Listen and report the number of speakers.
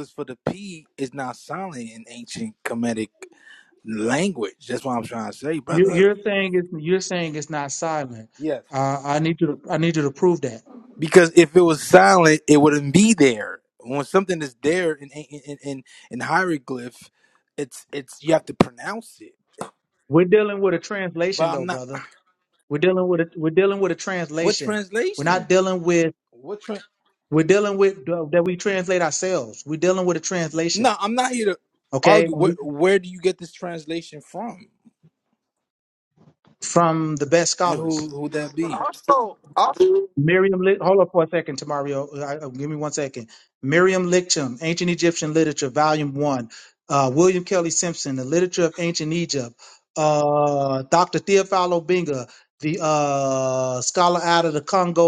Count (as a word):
three